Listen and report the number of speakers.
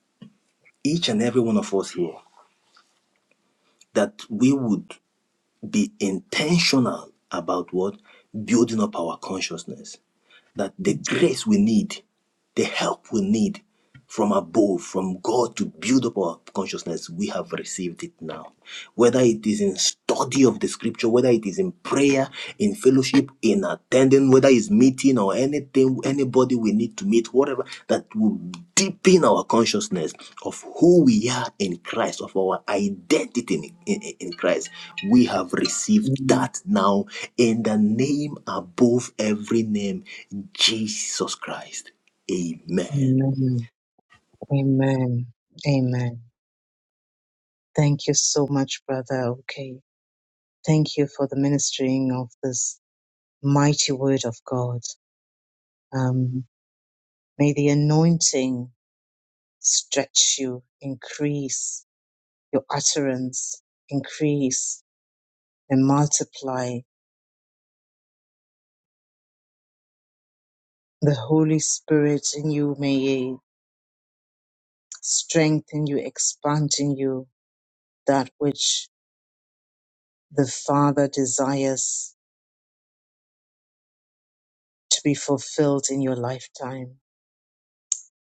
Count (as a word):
two